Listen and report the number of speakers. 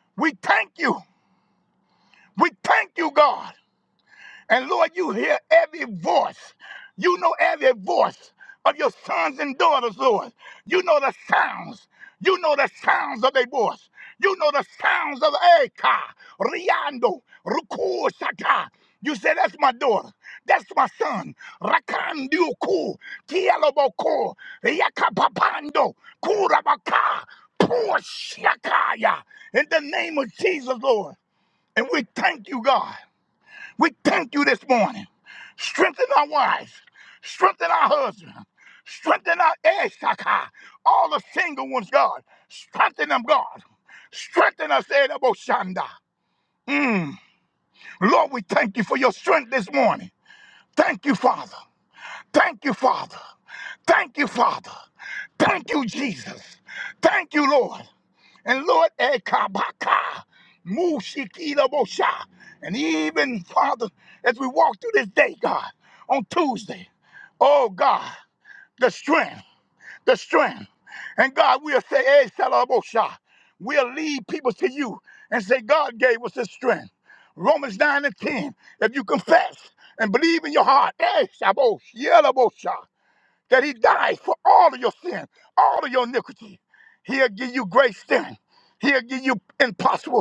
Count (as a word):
one